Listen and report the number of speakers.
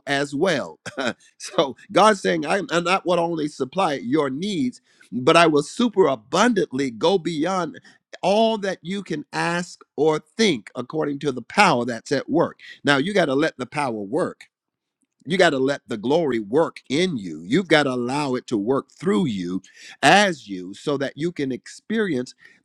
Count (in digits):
1